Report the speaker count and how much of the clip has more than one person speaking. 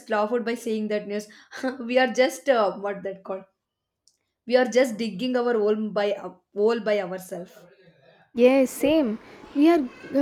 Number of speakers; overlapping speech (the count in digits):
2, no overlap